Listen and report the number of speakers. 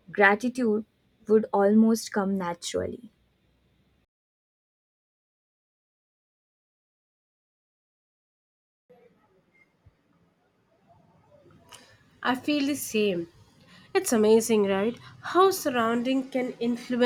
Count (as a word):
two